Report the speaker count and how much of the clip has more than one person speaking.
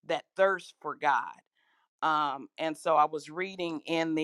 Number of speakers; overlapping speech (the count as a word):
one, no overlap